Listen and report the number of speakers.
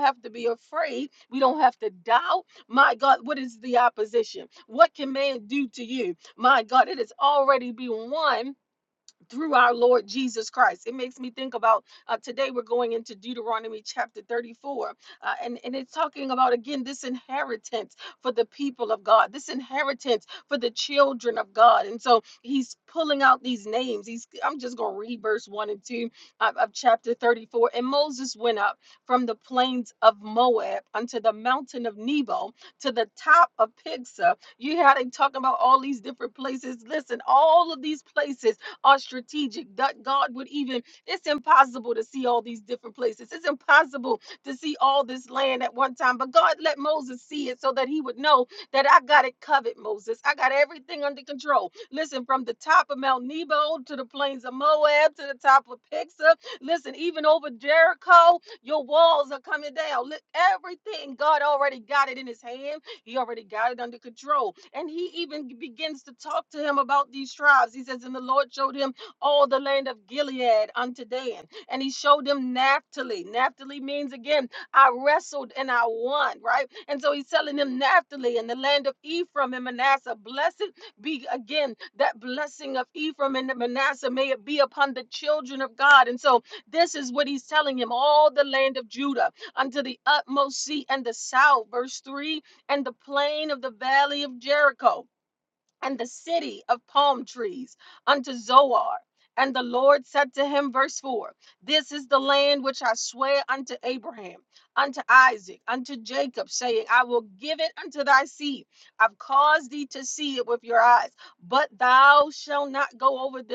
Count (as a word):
one